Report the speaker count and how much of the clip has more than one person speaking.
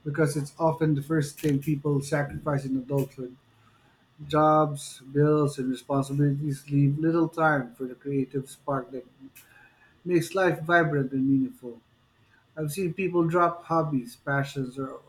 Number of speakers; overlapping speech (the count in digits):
1, no overlap